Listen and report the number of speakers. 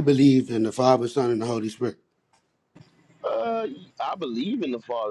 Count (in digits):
2